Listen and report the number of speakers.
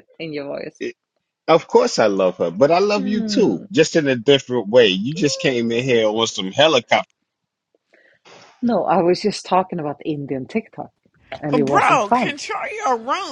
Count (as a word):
three